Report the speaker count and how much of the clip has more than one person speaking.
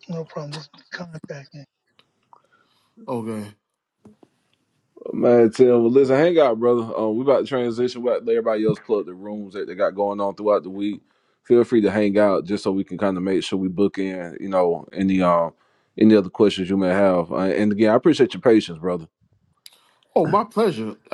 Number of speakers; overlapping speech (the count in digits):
3, no overlap